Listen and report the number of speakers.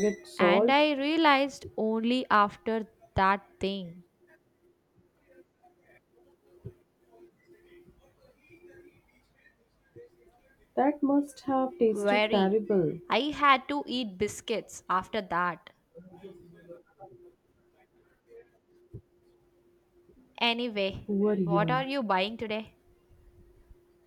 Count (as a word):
two